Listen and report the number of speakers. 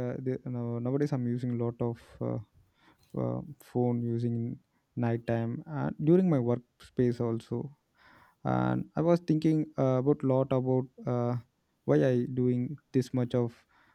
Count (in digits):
1